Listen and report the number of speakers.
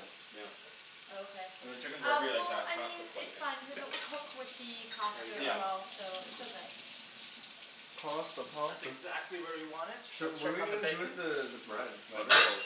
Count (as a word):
four